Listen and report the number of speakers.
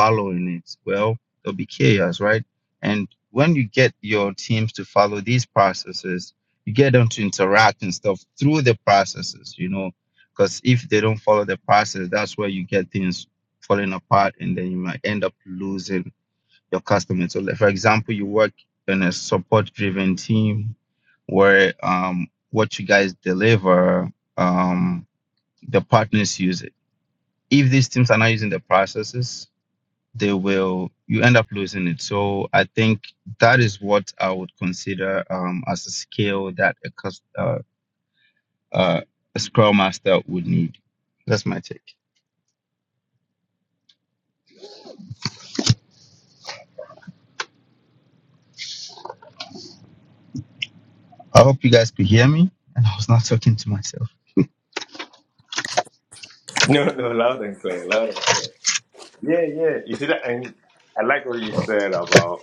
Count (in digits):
2